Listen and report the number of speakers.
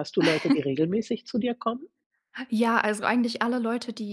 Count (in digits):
2